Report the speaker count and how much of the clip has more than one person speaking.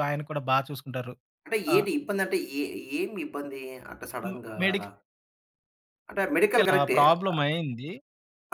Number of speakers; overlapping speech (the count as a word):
two, about 19%